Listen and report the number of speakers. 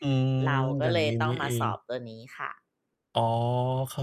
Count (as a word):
two